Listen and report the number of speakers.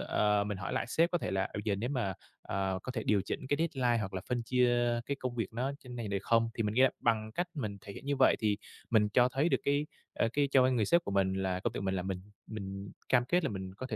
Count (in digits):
1